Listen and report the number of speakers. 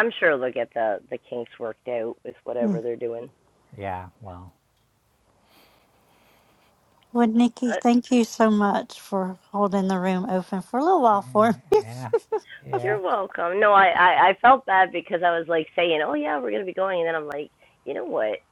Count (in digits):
3